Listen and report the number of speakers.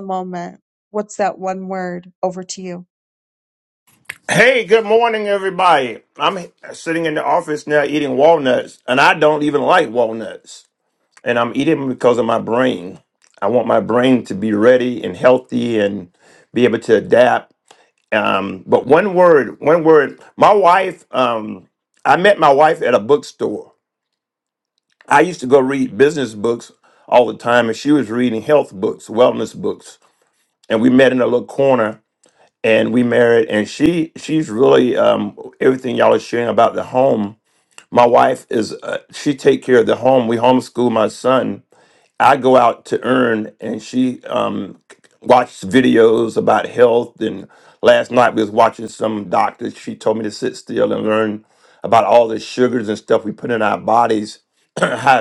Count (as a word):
two